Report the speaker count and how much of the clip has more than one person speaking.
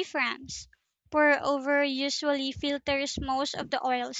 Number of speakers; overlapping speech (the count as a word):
one, no overlap